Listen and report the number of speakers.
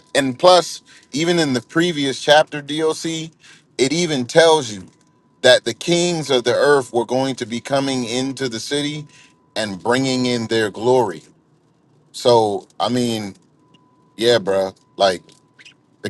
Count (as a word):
one